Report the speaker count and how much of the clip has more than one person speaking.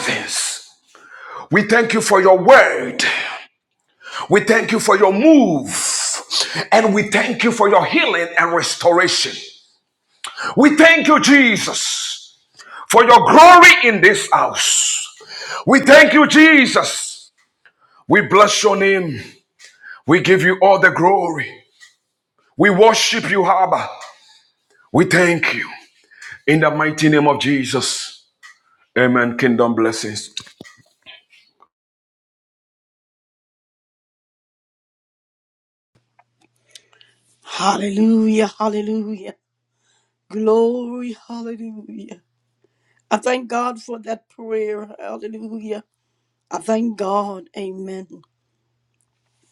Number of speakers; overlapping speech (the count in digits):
2, no overlap